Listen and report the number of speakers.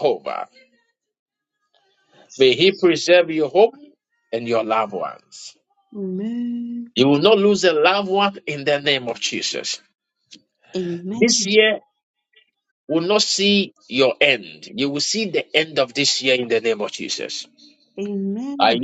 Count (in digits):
2